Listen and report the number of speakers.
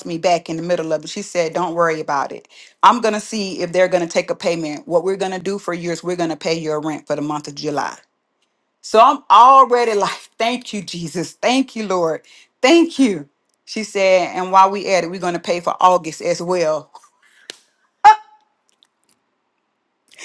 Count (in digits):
1